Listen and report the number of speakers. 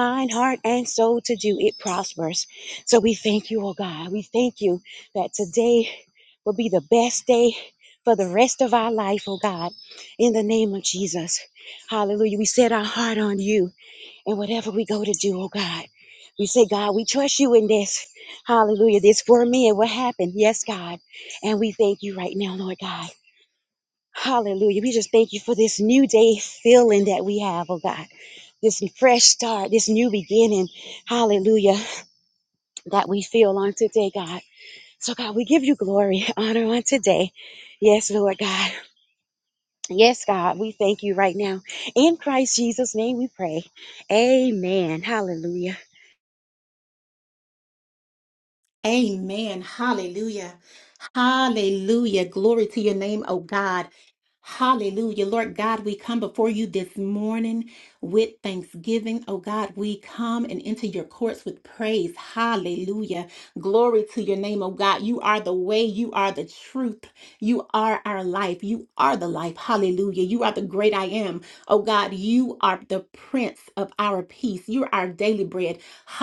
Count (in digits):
2